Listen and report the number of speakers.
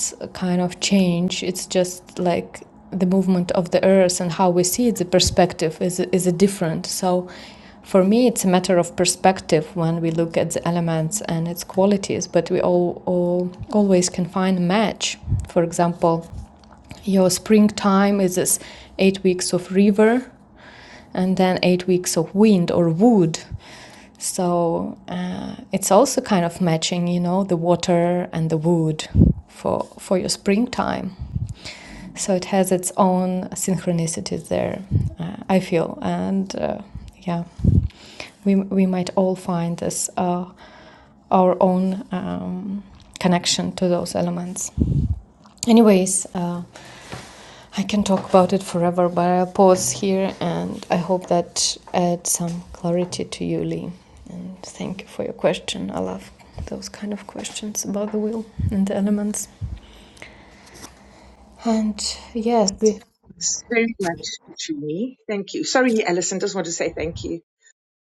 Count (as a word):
two